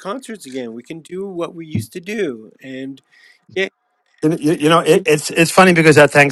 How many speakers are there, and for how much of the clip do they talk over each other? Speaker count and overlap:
2, no overlap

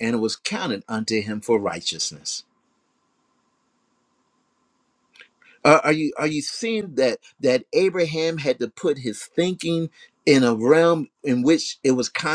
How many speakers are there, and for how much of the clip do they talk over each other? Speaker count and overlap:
1, no overlap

